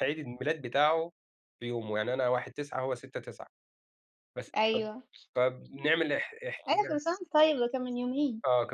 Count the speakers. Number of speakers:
2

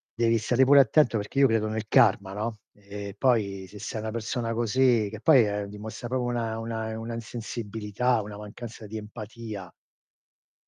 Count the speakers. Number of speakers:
1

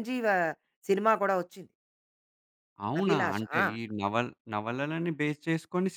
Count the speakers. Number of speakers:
2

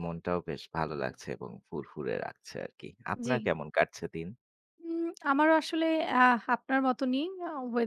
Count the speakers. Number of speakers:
2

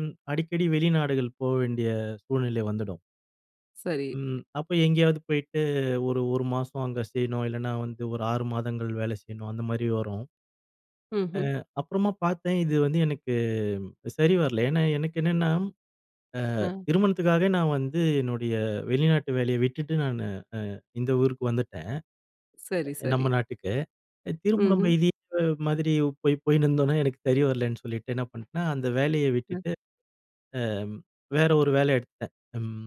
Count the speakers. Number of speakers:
2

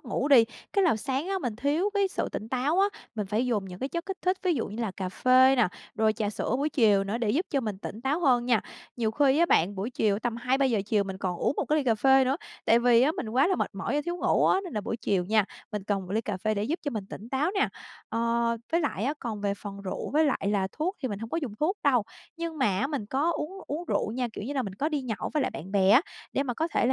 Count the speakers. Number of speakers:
1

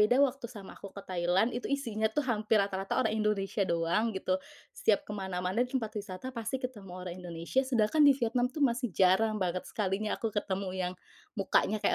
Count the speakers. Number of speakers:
1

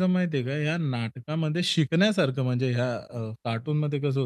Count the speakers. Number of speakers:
1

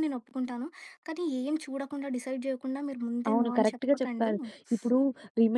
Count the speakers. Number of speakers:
2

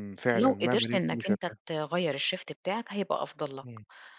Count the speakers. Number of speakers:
2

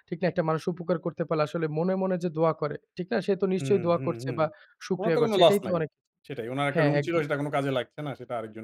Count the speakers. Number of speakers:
2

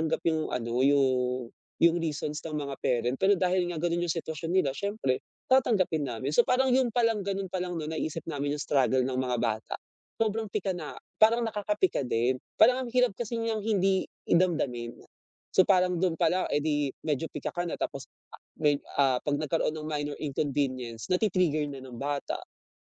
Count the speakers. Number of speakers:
1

